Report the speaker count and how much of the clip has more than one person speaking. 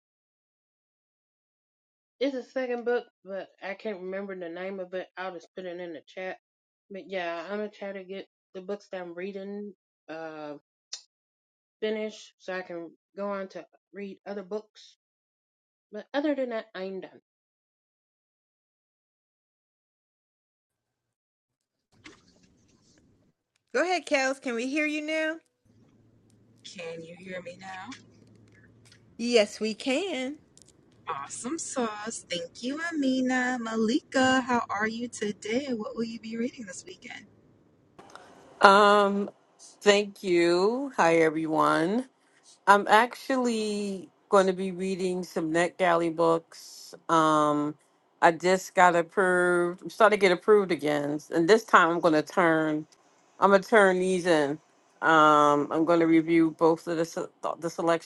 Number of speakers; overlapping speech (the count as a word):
four, no overlap